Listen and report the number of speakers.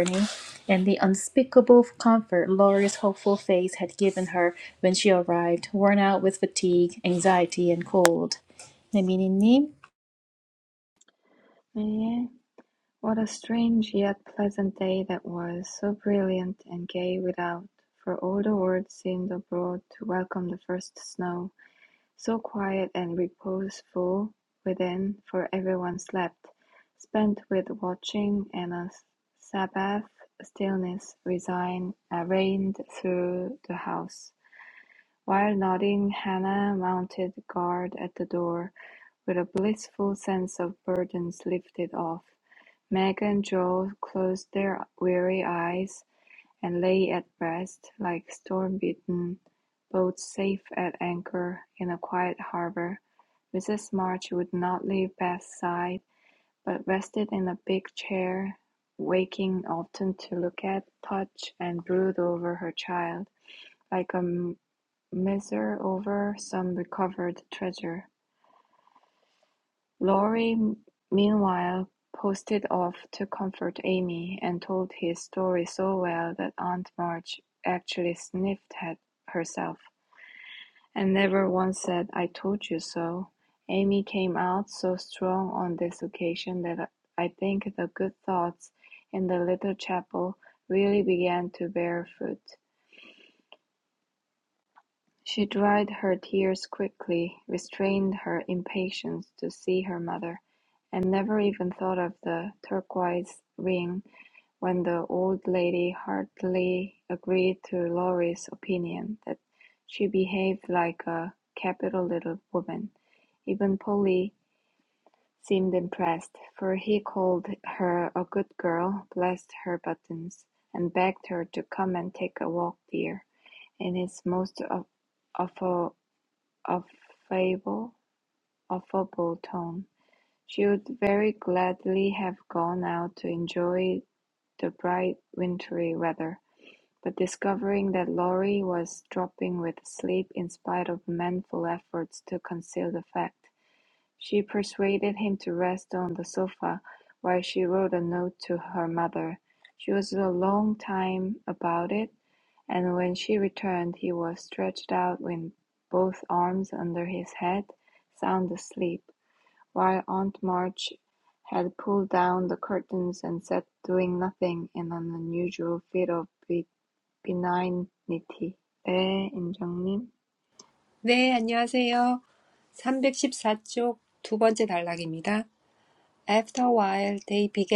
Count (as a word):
three